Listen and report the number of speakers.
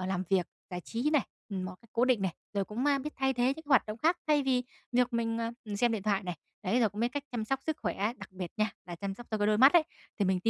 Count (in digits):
1